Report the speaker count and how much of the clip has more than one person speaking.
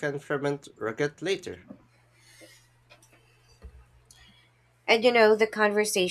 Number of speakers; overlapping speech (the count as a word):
two, no overlap